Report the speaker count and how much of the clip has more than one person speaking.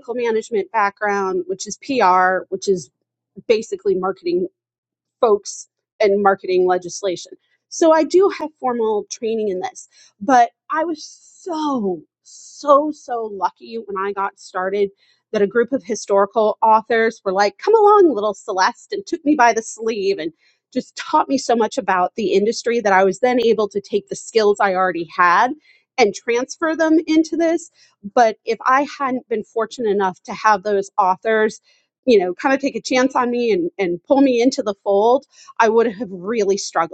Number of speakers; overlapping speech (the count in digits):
1, no overlap